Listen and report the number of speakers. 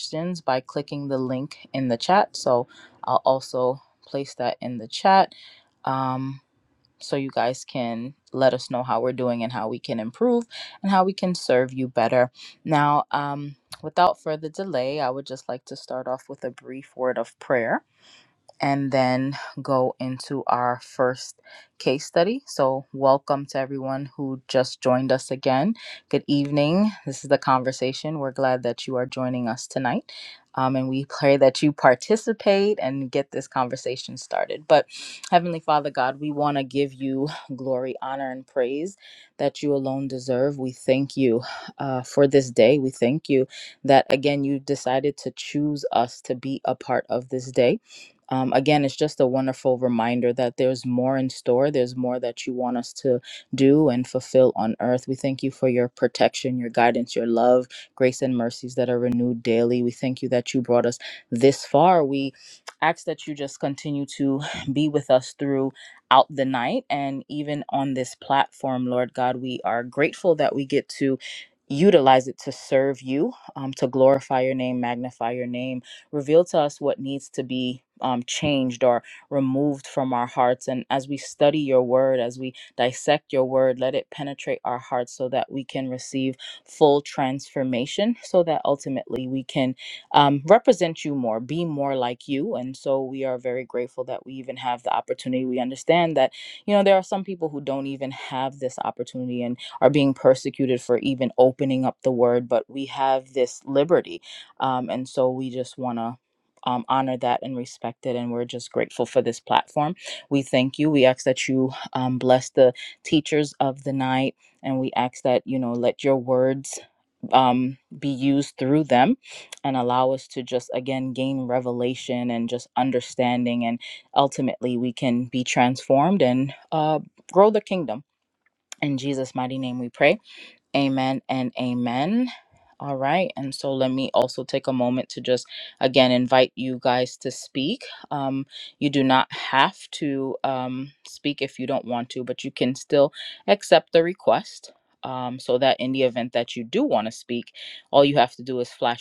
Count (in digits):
1